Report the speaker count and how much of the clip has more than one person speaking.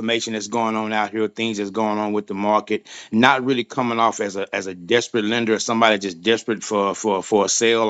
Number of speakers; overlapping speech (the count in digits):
1, no overlap